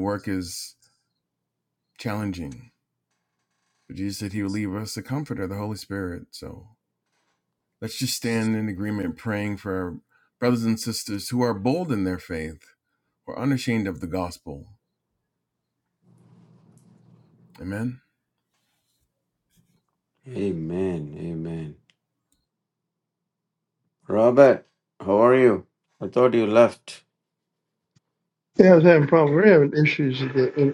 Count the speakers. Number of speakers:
three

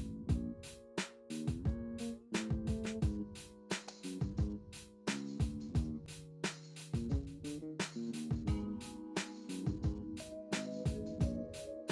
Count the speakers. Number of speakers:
zero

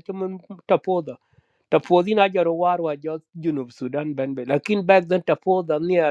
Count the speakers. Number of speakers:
one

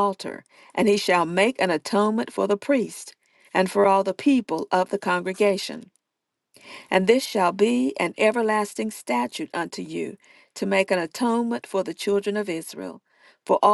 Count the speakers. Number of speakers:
one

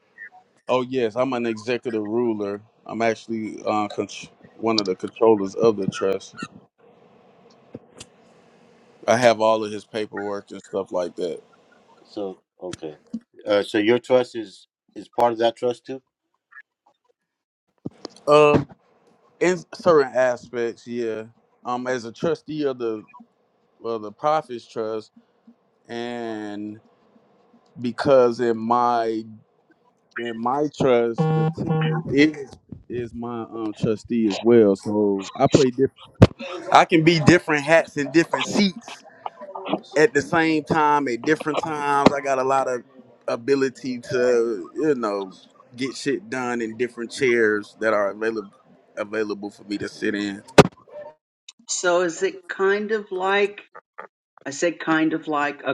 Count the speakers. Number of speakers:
three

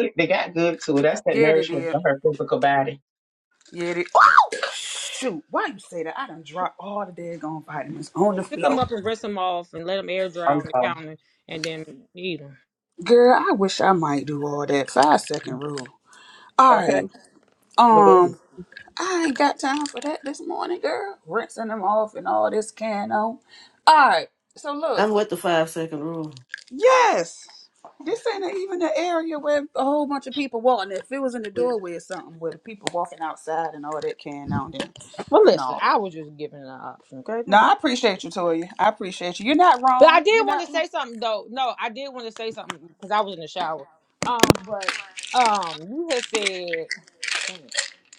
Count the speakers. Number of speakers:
four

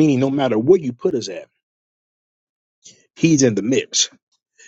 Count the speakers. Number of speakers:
one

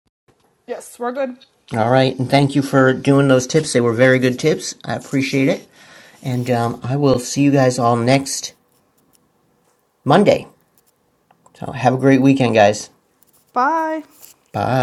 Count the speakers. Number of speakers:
two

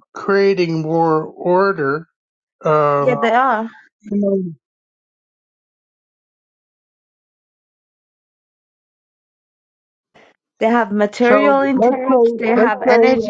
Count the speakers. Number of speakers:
two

